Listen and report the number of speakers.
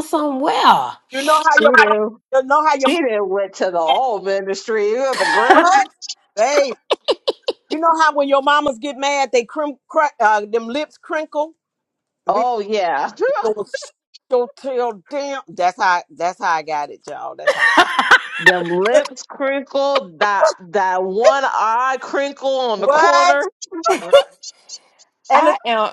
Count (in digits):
3